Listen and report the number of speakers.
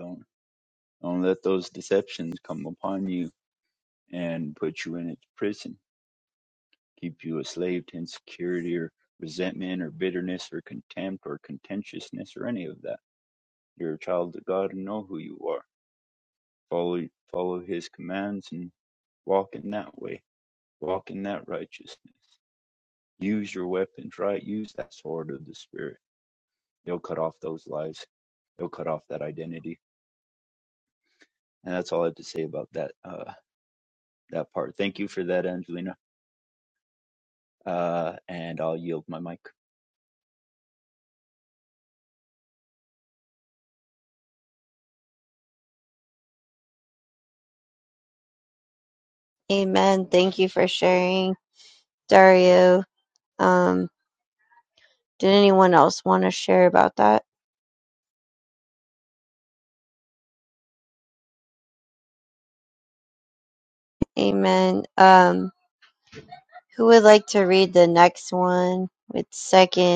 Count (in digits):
2